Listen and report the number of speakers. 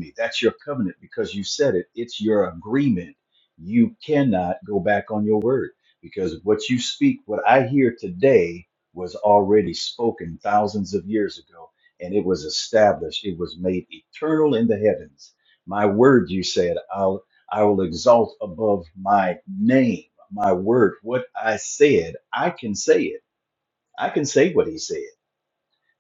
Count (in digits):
1